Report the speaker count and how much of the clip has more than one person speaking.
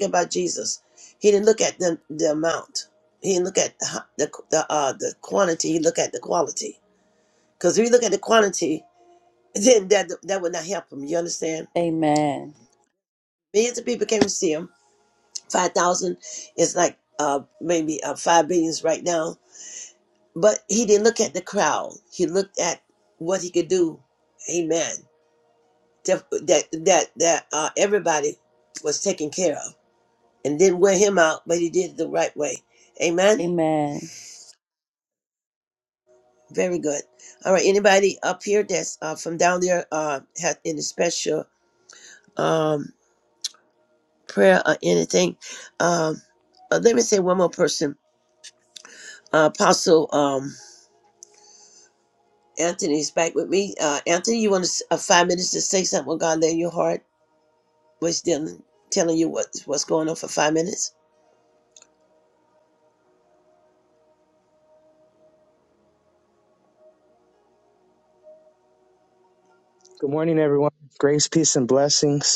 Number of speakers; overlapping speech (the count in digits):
3, under 1%